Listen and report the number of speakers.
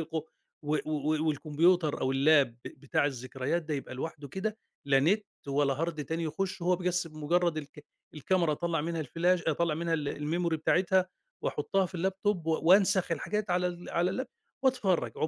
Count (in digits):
1